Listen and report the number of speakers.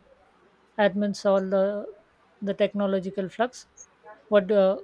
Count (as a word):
one